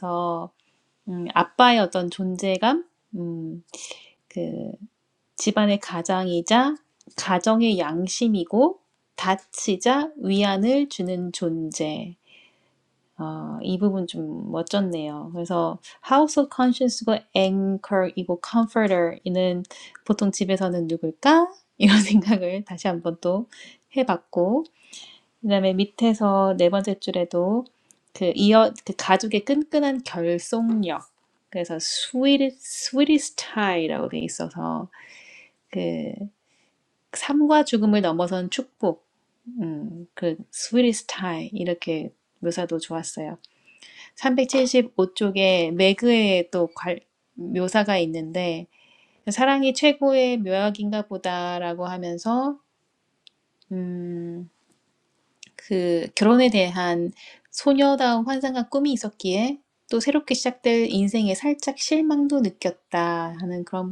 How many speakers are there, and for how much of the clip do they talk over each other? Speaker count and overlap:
1, no overlap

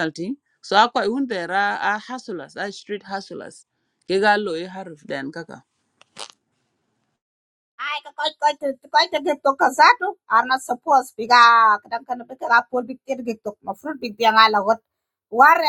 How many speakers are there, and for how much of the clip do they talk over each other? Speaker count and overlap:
2, no overlap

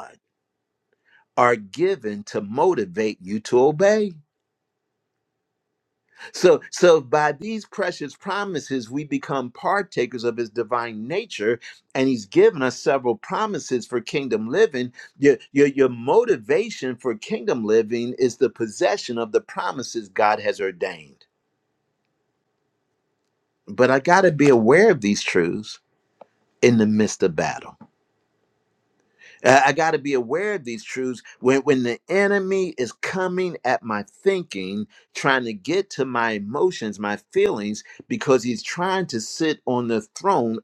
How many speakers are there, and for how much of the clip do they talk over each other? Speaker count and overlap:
1, no overlap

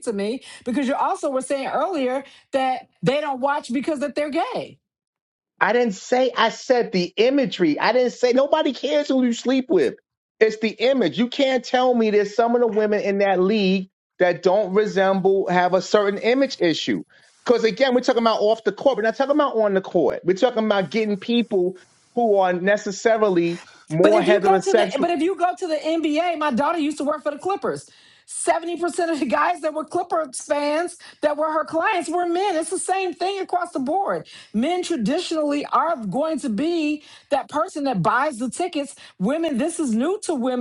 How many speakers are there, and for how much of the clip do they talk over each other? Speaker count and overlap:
2, about 3%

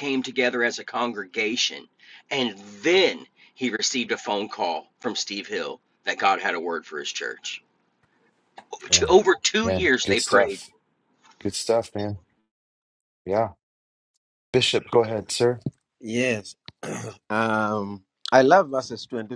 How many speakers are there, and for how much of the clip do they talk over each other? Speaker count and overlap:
3, about 6%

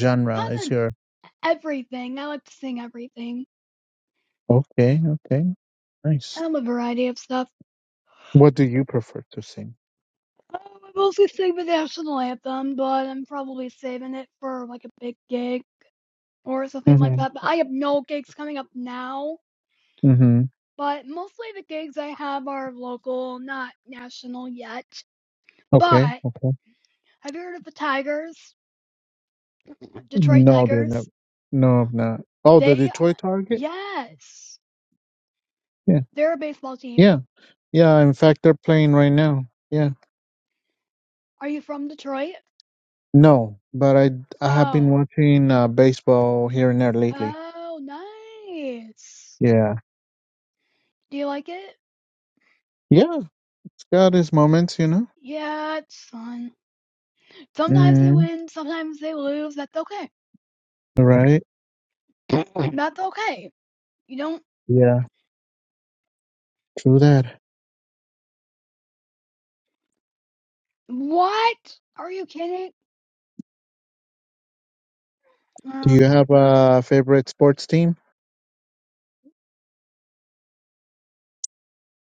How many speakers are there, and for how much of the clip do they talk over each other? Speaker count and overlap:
2, about 4%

